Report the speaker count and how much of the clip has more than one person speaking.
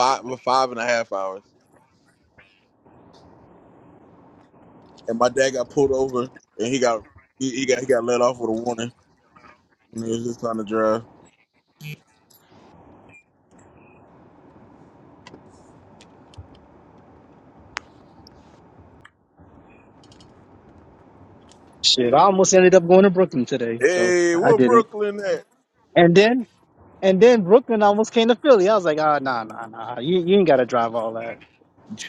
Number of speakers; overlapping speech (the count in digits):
2, about 3%